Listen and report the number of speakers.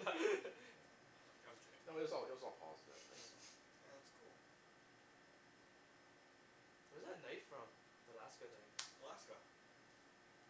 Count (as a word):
three